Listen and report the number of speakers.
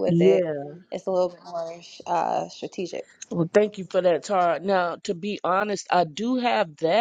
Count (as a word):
two